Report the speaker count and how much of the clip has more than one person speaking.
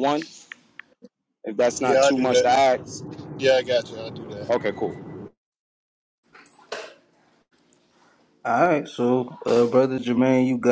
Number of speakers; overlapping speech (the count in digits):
3, about 8%